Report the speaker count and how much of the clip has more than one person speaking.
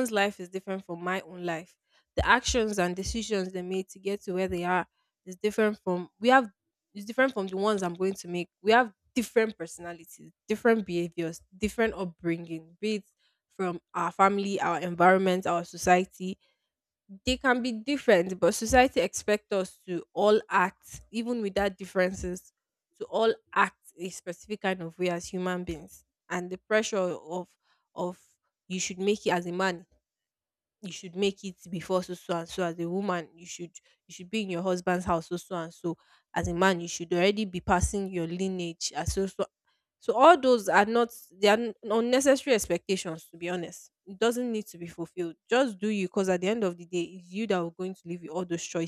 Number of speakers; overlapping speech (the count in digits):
1, no overlap